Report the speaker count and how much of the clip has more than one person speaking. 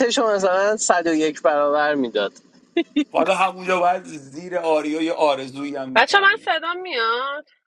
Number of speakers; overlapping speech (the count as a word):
three, about 6%